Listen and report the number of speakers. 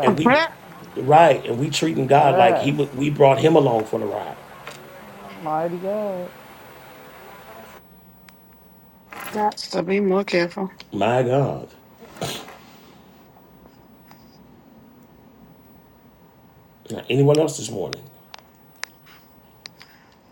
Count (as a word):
three